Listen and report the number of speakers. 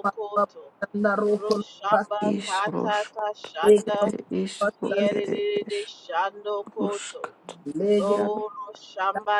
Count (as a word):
three